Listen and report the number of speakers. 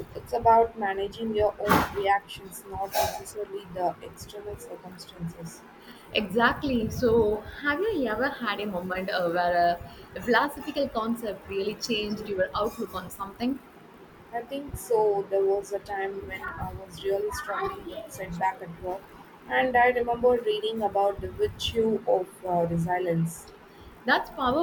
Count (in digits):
2